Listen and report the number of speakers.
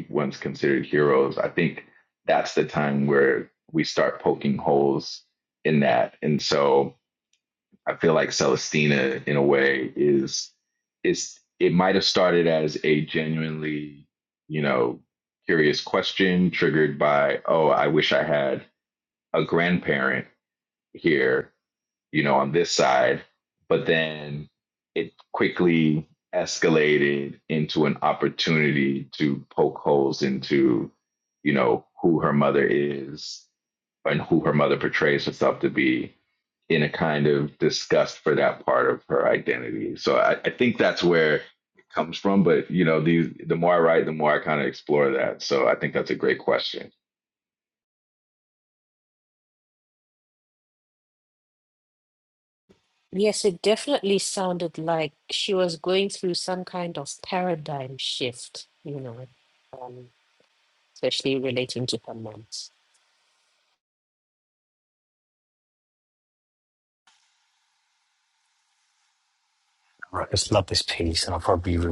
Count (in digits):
3